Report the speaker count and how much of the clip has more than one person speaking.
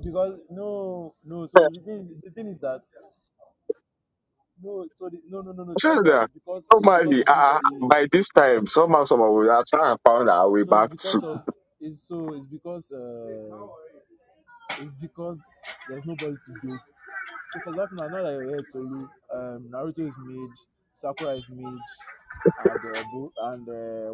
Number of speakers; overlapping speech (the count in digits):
2, about 9%